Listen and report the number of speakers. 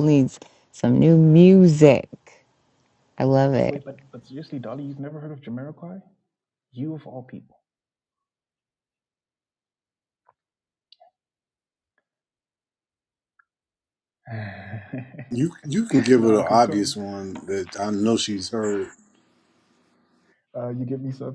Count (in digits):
3